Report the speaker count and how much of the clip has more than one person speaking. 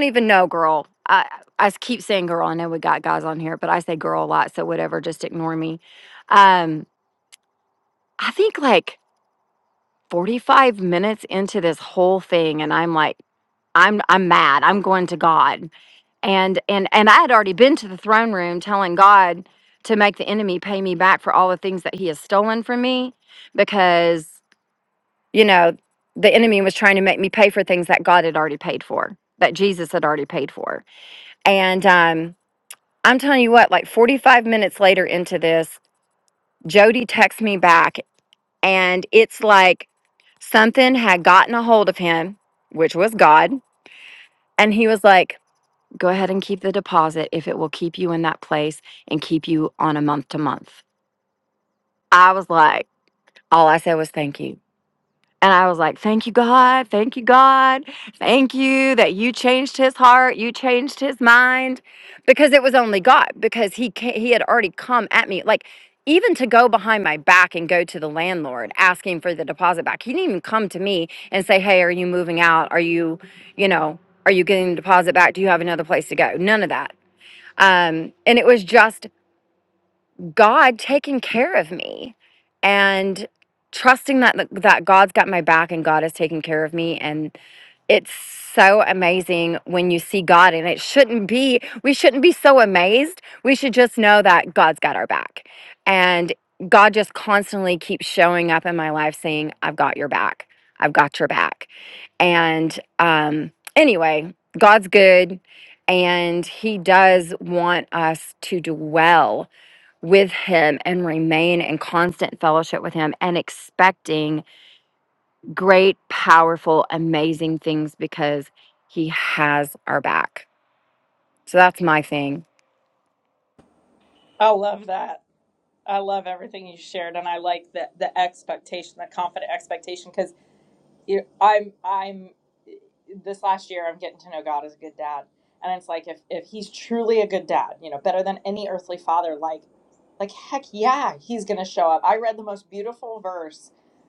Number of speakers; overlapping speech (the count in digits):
2, no overlap